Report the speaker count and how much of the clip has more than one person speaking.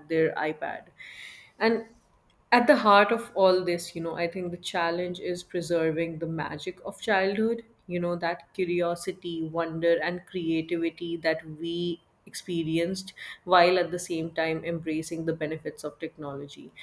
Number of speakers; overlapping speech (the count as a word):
one, no overlap